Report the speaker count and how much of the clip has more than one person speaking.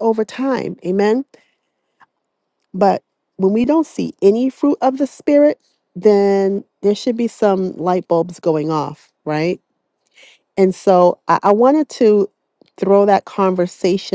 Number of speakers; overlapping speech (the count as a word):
one, no overlap